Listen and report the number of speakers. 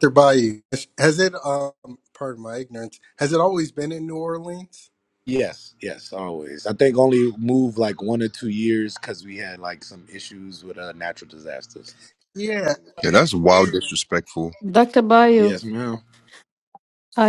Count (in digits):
4